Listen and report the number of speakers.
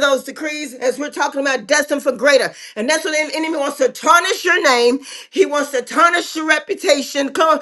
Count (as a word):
one